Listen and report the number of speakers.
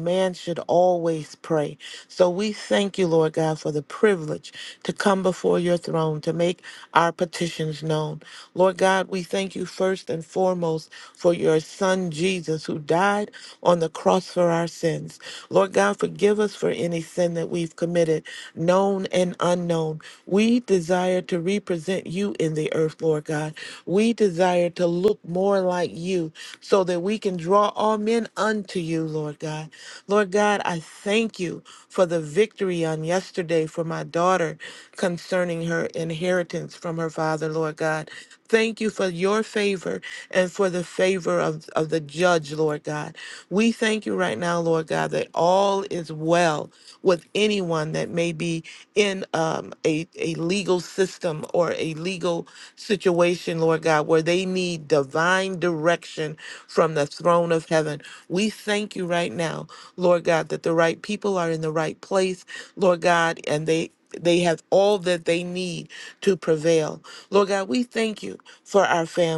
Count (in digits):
1